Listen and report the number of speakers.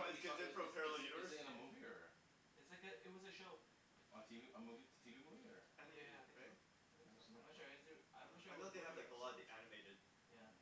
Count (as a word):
three